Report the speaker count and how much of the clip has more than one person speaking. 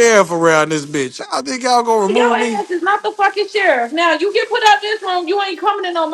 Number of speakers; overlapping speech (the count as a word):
two, about 10%